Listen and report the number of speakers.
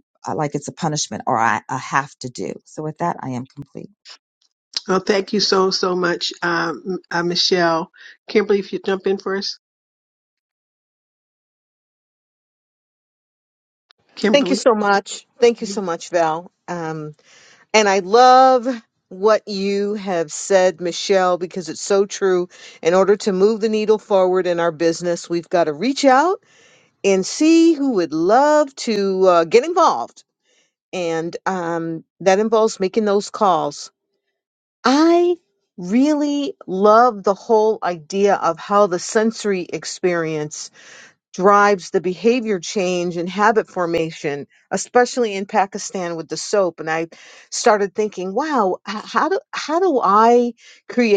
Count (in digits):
3